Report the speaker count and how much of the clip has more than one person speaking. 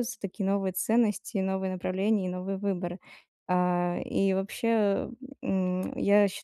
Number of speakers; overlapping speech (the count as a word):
one, no overlap